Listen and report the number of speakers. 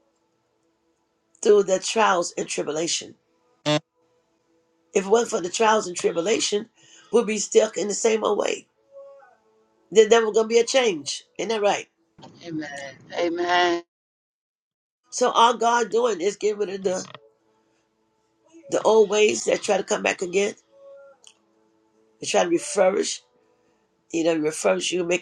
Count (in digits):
2